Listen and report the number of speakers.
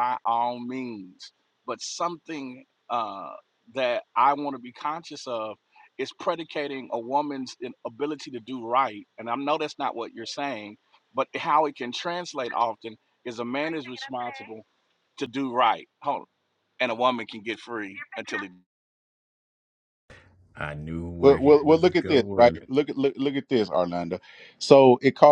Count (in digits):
3